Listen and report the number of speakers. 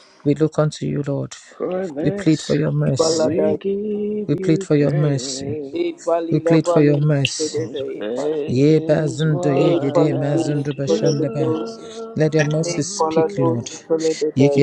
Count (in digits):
3